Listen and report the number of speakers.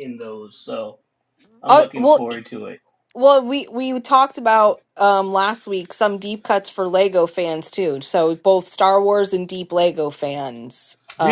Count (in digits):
2